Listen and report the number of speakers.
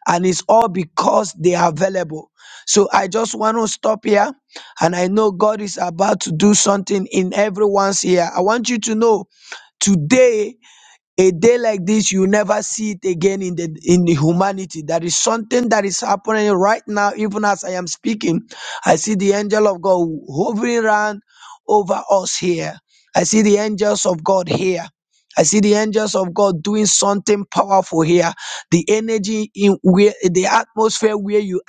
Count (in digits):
1